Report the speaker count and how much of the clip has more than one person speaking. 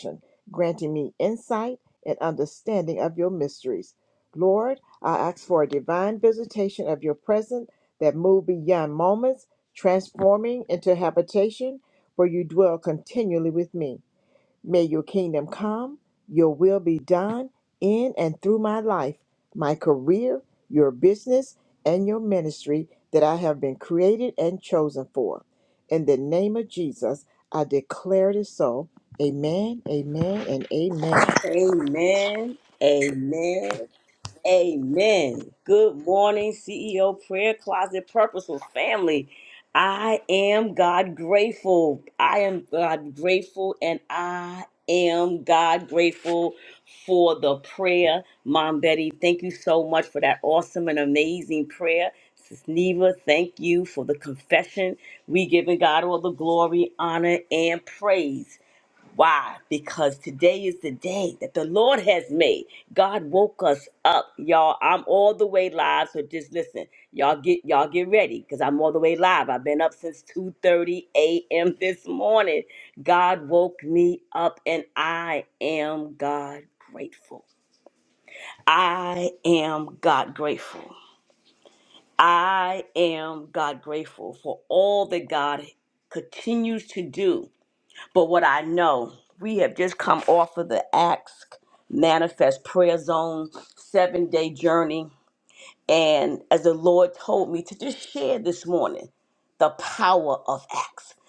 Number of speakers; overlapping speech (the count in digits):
2, no overlap